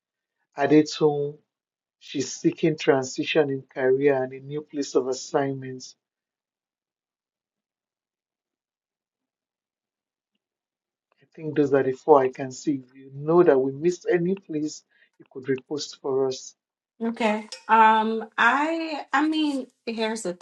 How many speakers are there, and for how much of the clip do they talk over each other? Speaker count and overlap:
two, no overlap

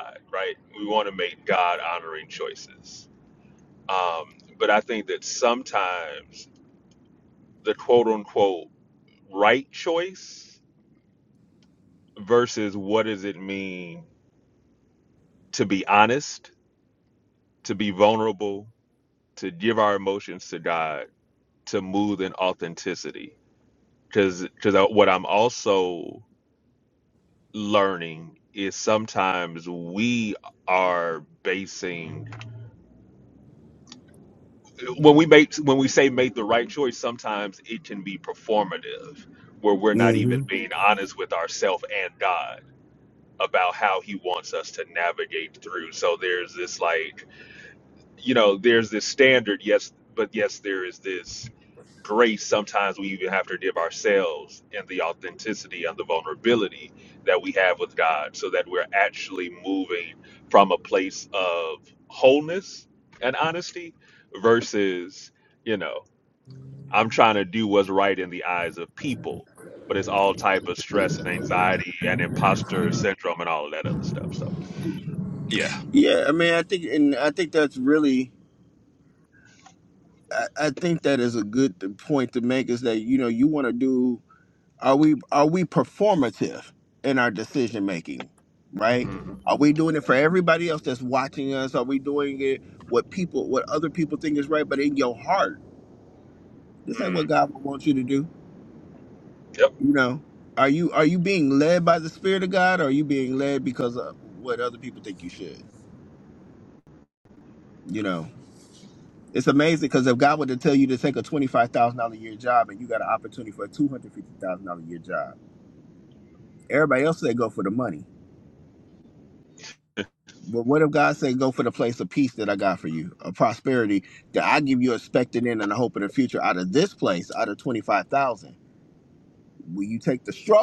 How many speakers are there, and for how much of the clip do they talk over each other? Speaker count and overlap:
two, about 1%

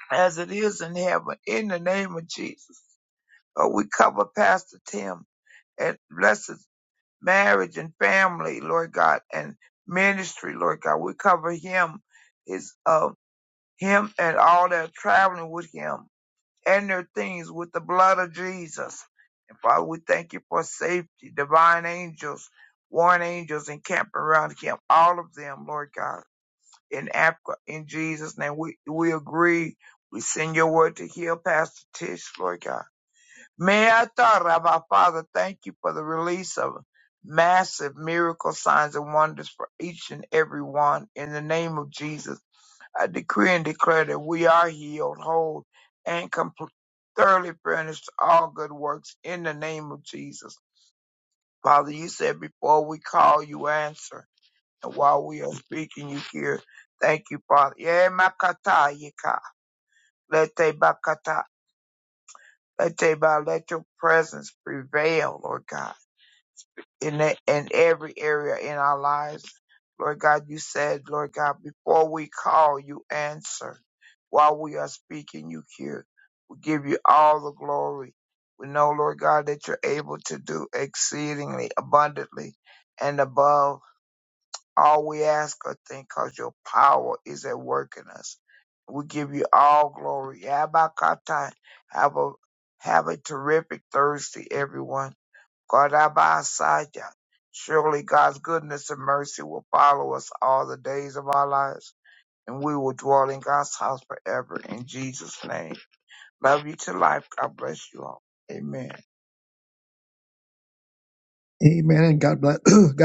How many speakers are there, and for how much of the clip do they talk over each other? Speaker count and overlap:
two, no overlap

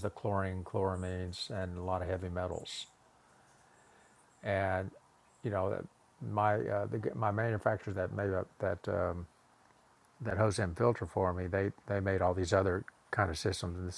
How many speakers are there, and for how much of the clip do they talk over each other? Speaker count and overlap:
one, no overlap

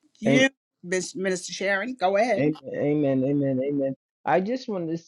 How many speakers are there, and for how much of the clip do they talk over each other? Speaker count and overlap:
two, about 7%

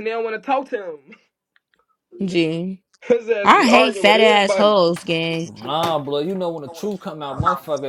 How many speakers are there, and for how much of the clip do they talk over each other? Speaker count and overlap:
three, about 16%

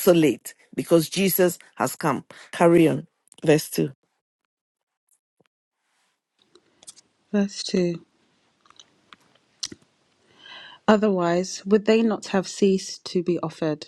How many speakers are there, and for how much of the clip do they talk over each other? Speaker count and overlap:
two, no overlap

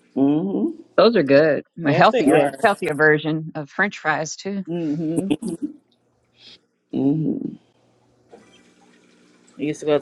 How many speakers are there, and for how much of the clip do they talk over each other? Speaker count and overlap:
three, about 7%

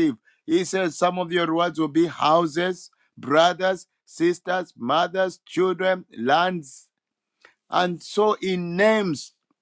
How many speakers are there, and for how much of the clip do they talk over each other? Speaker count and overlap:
one, no overlap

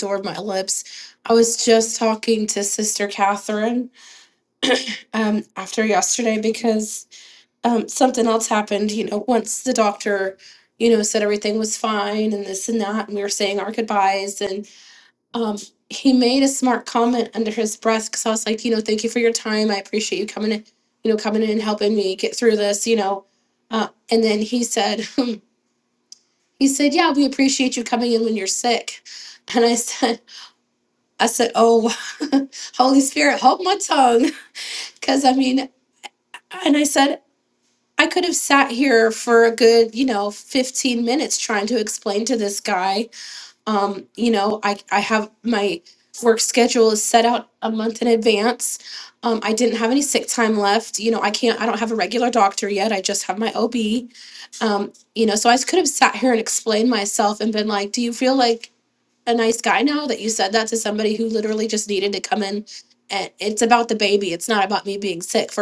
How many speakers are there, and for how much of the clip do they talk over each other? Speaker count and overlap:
one, no overlap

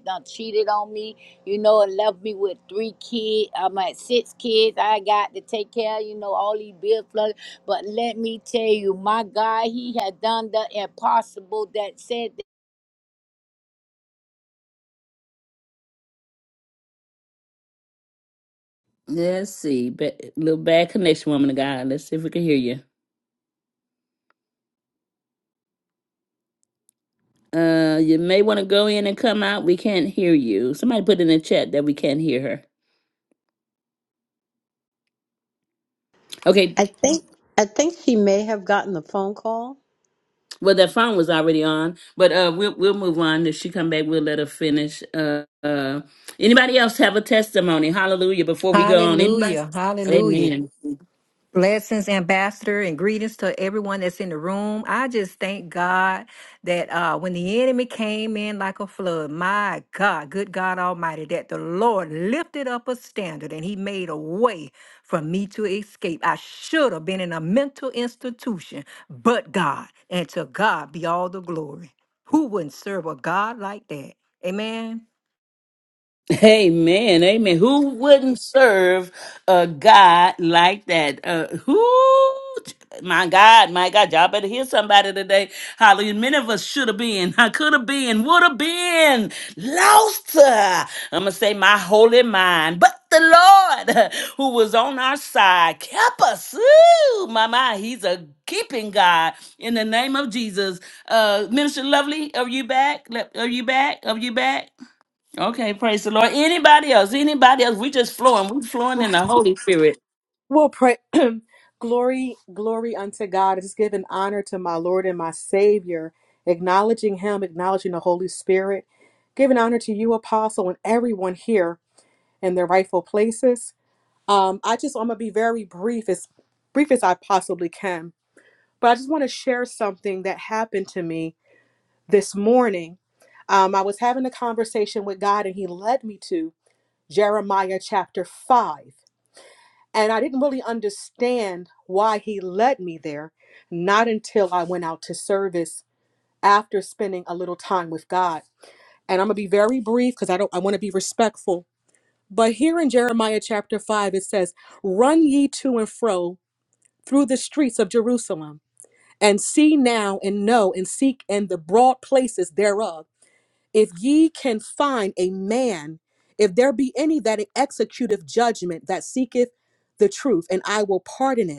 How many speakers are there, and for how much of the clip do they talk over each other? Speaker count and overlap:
five, about 1%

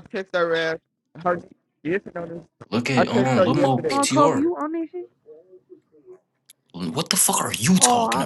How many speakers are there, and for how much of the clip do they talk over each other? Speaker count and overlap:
three, about 24%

